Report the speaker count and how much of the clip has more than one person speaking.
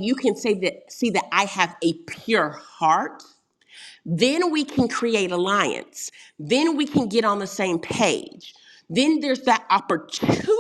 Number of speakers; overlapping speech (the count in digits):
1, no overlap